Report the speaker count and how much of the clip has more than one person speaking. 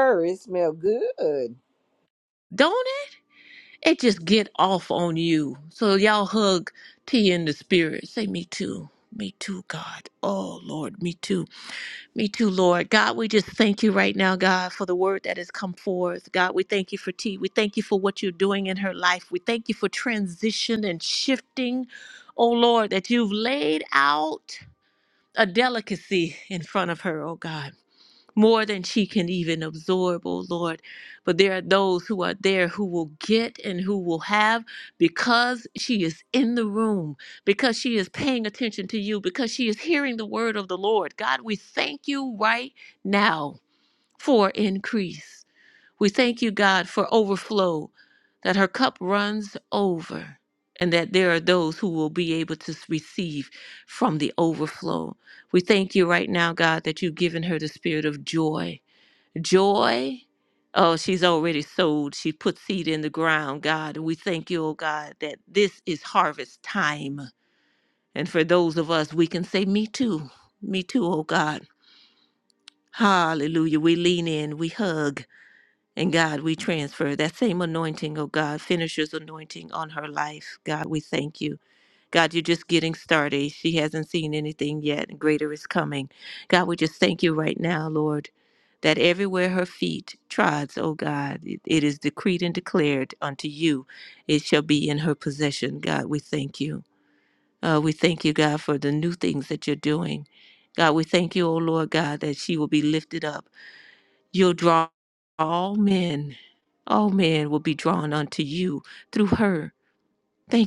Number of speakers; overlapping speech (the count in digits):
2, no overlap